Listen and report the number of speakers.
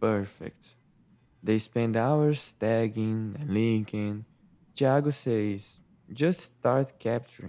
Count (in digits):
1